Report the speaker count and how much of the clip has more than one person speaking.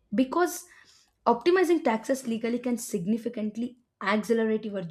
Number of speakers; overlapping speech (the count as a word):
one, no overlap